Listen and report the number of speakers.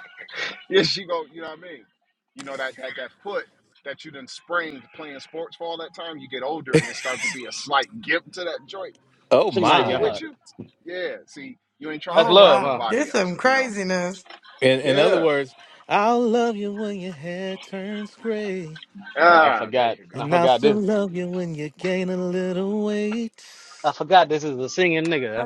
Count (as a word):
four